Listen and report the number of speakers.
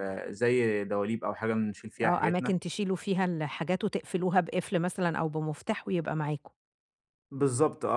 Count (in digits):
2